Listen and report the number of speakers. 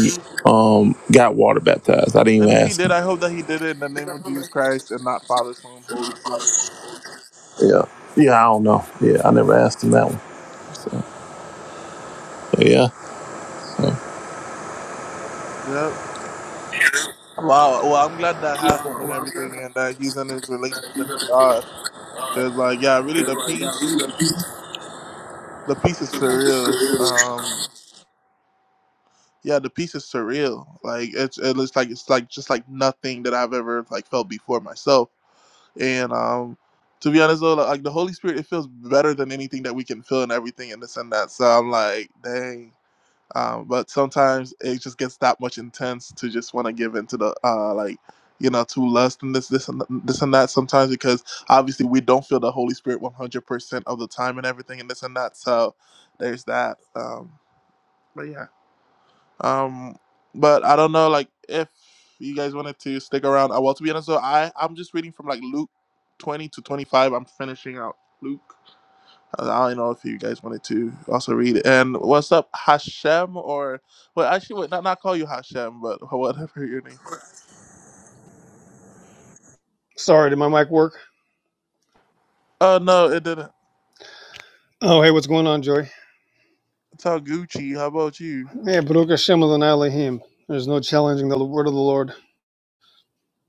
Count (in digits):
3